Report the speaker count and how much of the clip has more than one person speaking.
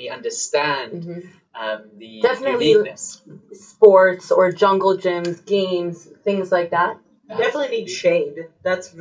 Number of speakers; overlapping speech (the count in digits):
3, about 18%